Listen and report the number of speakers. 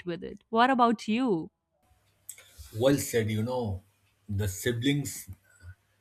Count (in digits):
2